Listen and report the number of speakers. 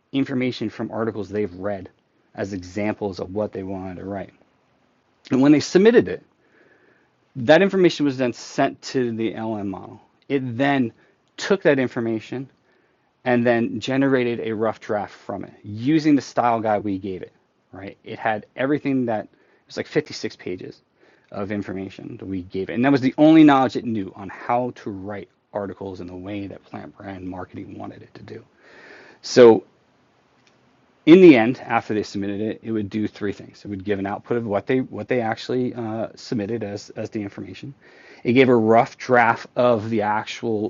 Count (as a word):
one